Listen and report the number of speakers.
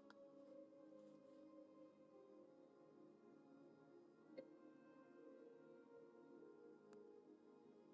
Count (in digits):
0